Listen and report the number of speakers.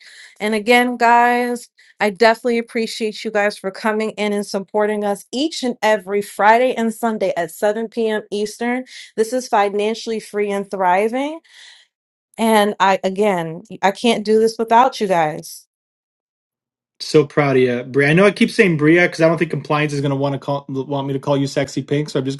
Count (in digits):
2